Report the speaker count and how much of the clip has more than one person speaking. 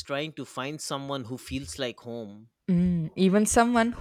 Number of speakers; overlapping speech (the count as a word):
two, no overlap